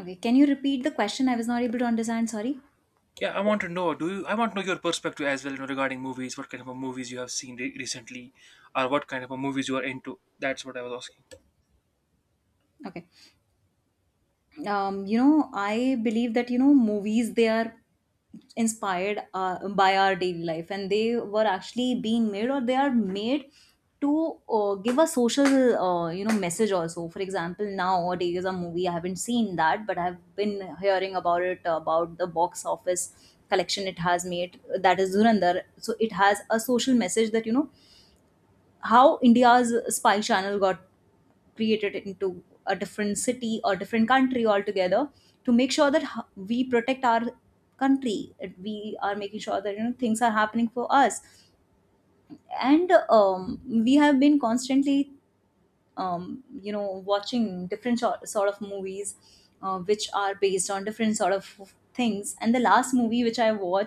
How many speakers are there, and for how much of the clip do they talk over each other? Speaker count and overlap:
two, no overlap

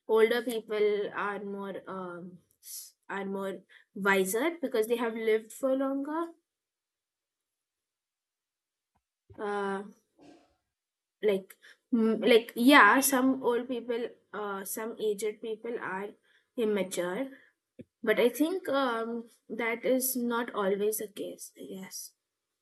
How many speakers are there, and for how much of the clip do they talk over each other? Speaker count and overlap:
one, no overlap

